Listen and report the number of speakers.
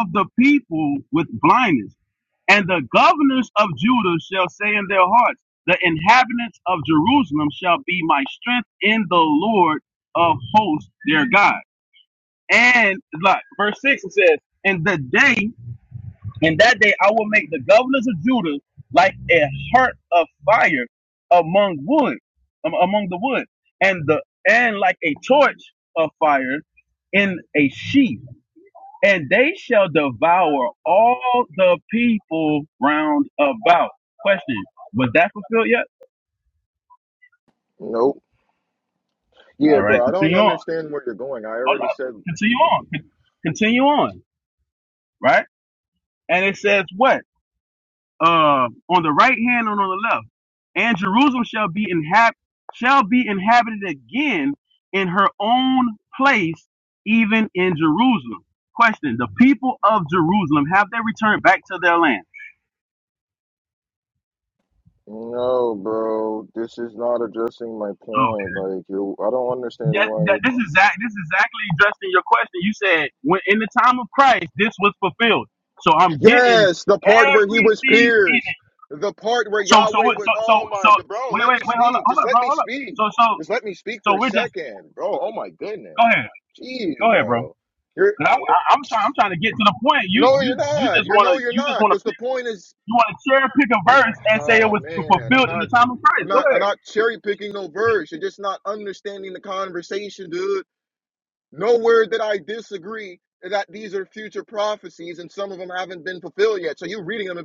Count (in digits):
2